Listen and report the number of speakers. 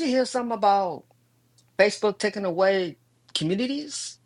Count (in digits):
1